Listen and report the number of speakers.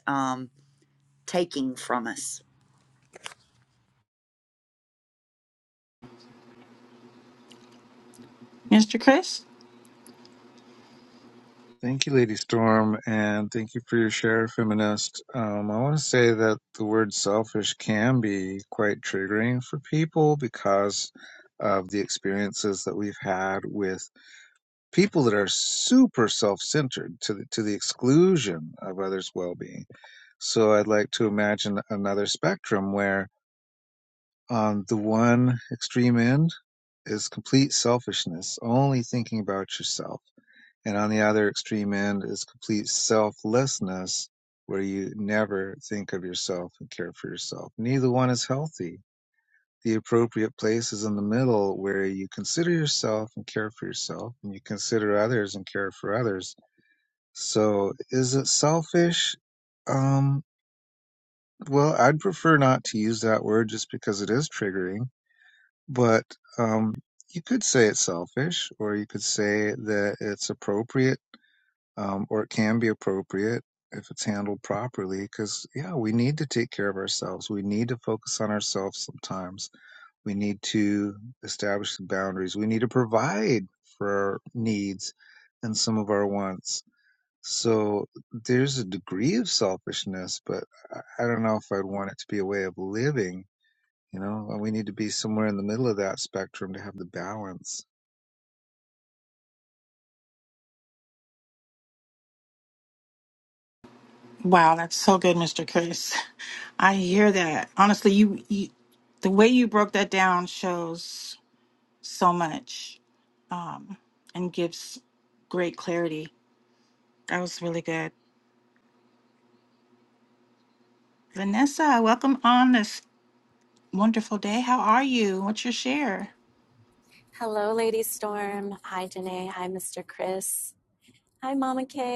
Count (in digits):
4